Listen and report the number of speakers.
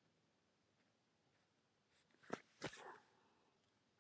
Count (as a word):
zero